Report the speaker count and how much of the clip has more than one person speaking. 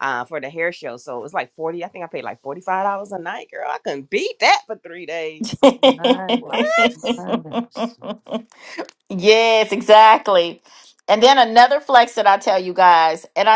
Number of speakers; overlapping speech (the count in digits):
3, about 1%